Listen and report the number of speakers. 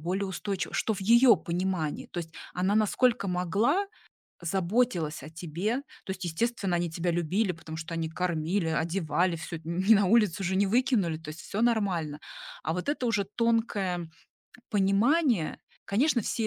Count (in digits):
1